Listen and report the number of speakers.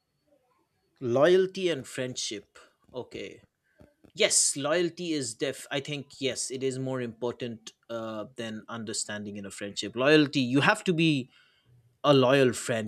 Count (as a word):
one